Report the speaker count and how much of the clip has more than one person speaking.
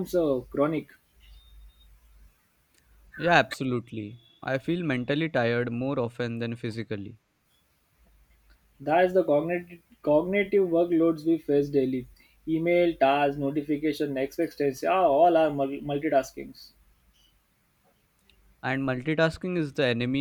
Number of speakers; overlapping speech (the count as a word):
two, no overlap